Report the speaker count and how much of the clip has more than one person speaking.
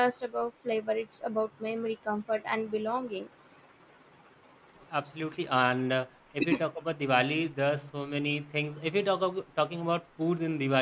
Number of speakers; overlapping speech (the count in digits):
2, no overlap